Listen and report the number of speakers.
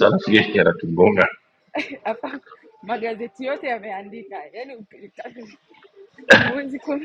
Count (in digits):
2